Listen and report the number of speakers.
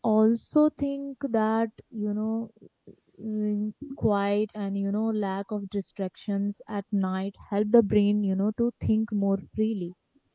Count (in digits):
1